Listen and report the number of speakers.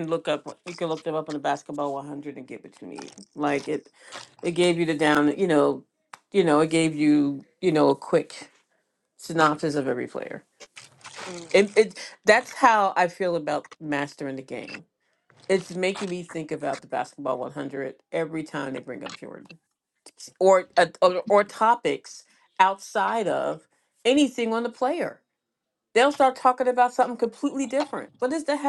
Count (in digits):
1